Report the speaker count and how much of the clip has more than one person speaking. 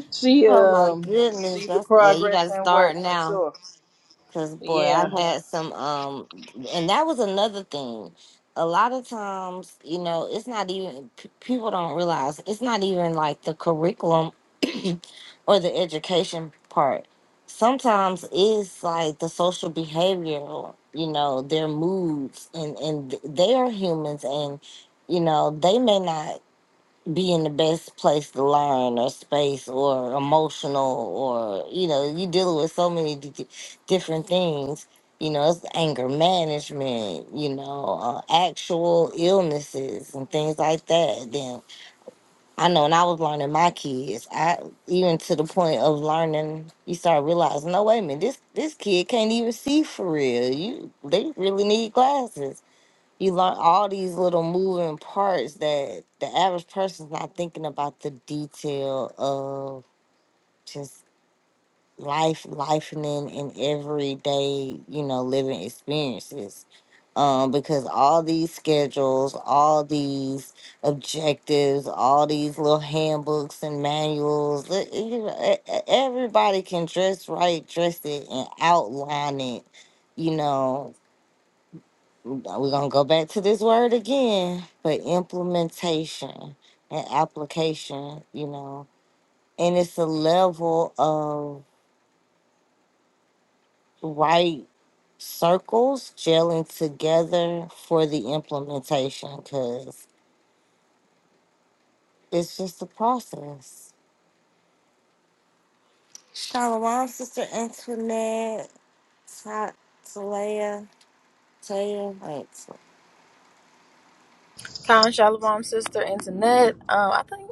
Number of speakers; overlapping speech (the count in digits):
3, about 3%